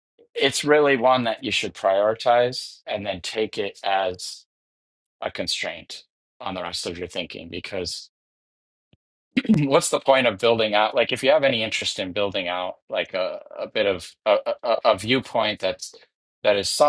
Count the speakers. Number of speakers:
one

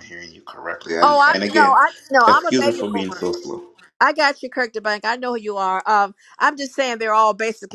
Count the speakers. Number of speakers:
two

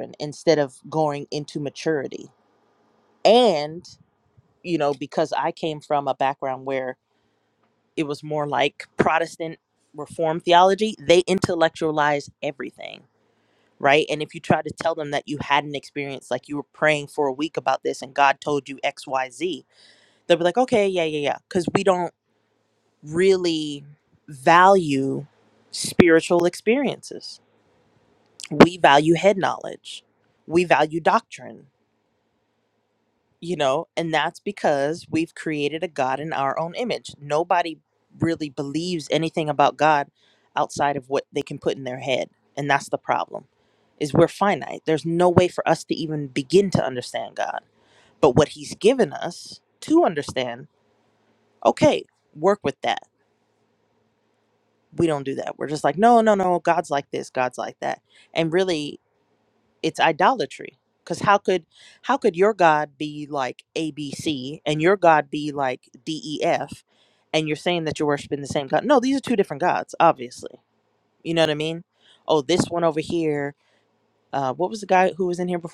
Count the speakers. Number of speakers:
one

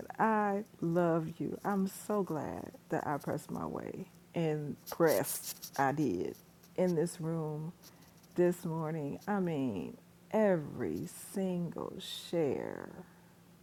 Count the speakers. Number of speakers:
one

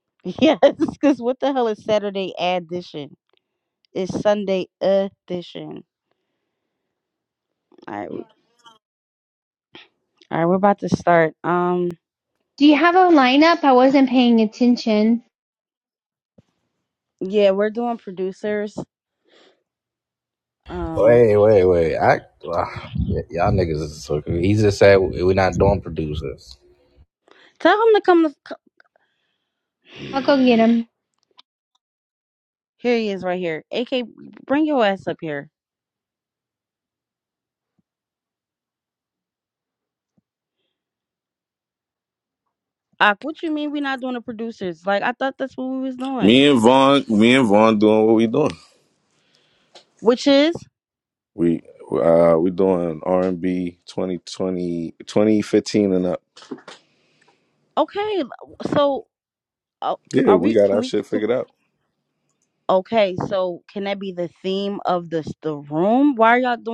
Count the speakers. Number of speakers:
four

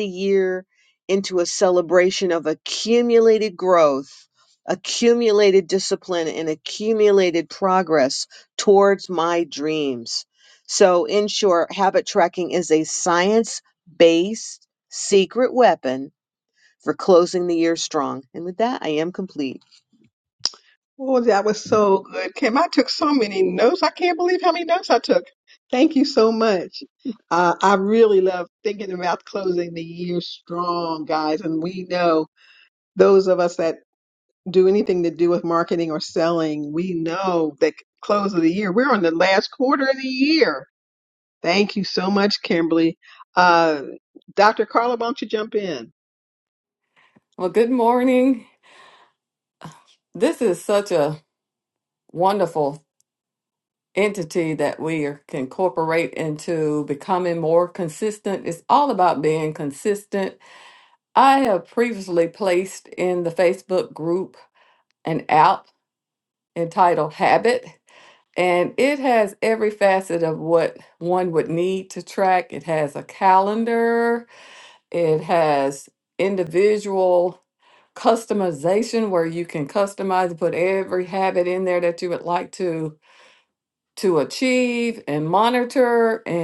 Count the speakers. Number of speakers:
three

